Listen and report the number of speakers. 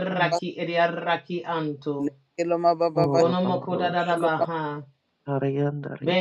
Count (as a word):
three